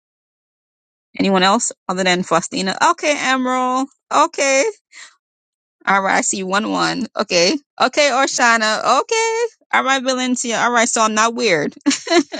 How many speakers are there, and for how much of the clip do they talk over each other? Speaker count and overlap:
1, no overlap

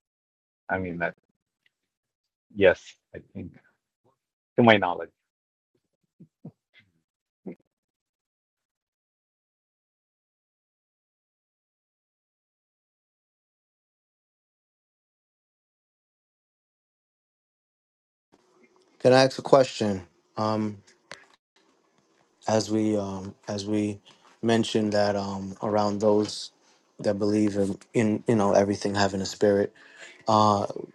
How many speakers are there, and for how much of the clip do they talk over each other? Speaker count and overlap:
2, no overlap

